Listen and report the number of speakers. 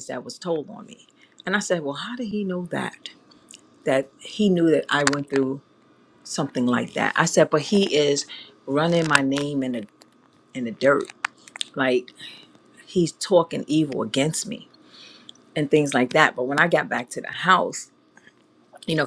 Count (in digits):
1